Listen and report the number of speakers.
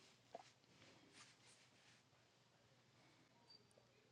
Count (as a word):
zero